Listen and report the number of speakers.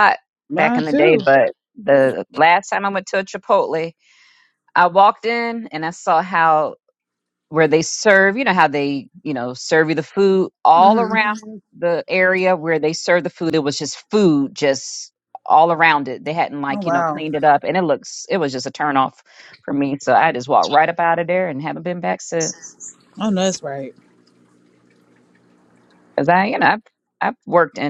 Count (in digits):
2